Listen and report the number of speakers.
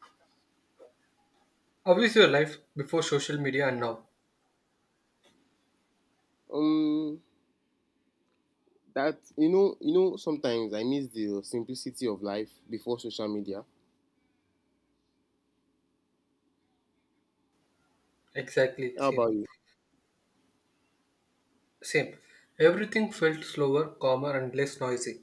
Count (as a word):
two